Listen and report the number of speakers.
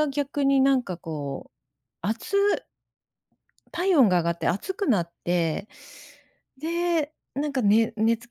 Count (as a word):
one